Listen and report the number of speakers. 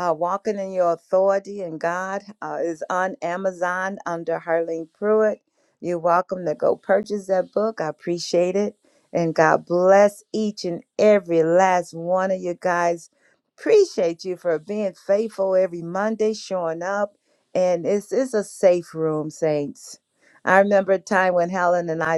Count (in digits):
1